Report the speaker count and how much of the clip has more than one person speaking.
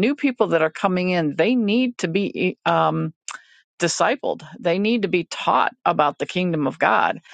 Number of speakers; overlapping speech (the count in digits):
1, no overlap